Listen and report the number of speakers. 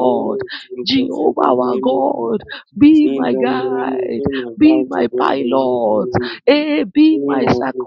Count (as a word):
two